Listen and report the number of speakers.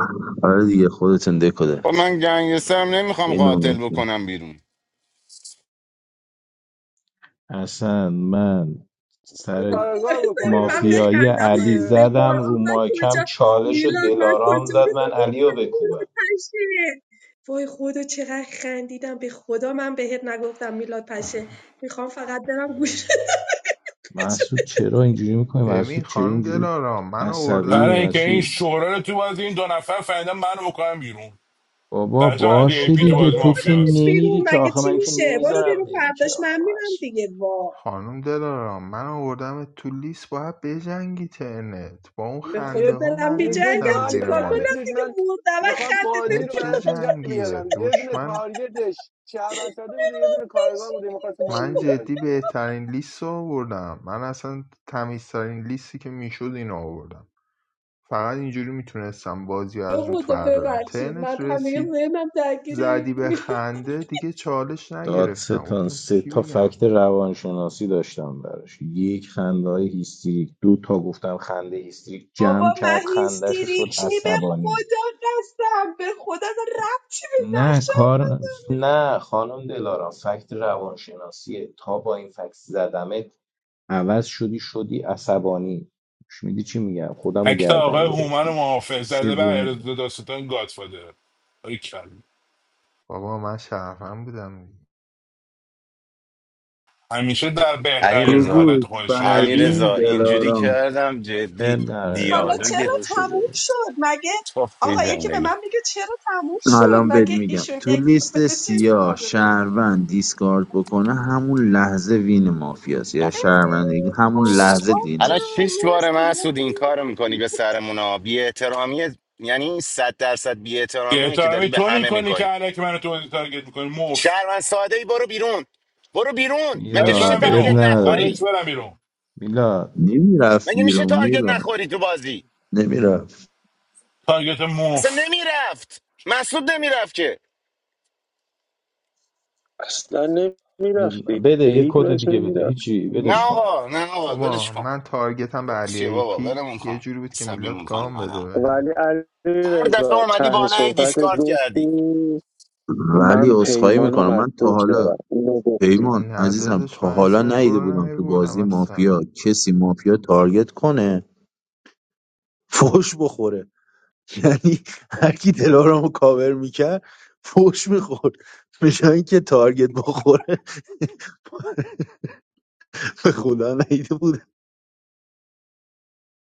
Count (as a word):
eight